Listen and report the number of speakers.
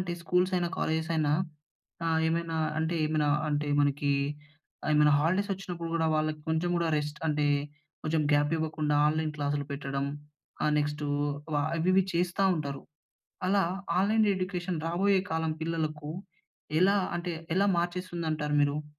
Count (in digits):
1